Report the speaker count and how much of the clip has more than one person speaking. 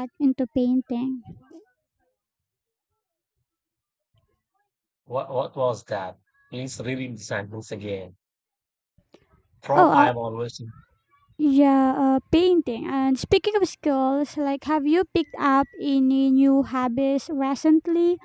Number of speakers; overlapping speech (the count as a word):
two, about 2%